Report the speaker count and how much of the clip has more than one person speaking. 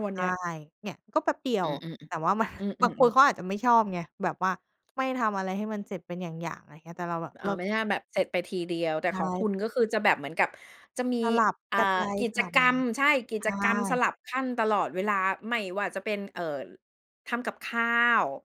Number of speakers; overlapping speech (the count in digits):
2, about 11%